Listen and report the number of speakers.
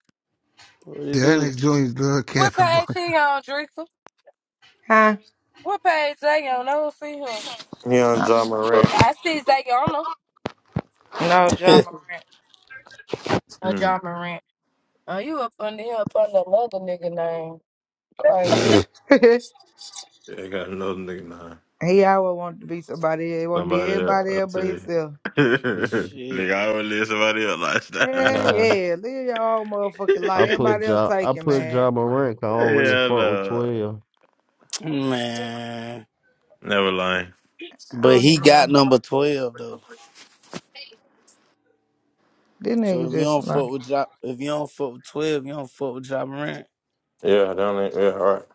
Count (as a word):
six